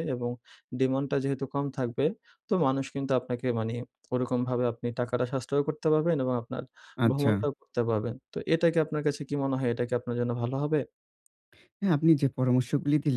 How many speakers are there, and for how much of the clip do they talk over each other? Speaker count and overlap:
2, about 2%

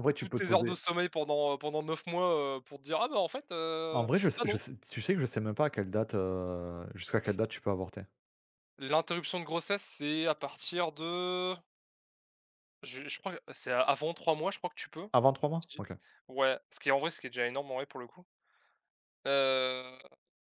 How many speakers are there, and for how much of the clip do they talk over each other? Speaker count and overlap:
2, about 7%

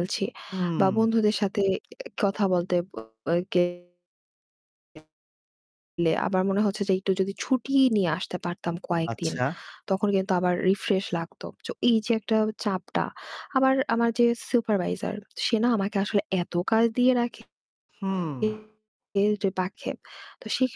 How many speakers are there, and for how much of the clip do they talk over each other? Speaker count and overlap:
2, about 3%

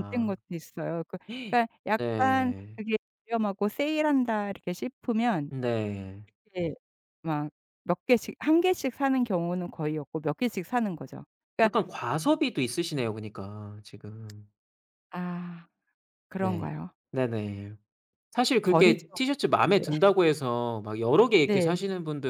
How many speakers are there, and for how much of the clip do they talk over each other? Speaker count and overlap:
2, about 11%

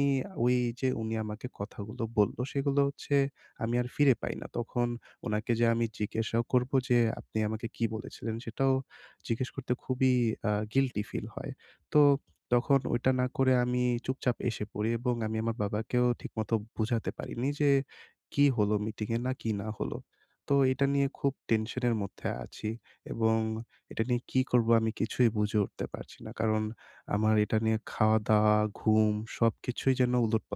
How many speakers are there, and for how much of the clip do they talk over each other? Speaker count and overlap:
1, no overlap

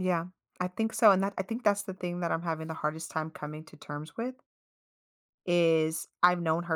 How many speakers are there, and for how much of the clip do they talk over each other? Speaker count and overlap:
1, no overlap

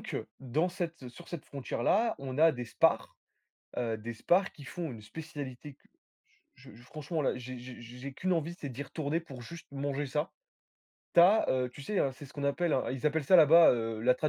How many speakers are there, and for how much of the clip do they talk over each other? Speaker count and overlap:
1, no overlap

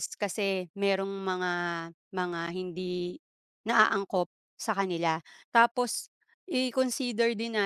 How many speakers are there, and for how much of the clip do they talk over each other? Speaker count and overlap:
1, no overlap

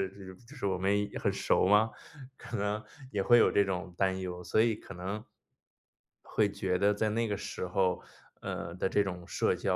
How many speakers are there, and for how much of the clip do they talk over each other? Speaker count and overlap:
1, no overlap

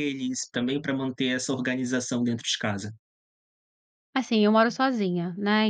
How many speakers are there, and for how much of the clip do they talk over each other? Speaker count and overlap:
2, no overlap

